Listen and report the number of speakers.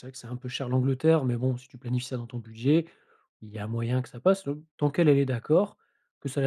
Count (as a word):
one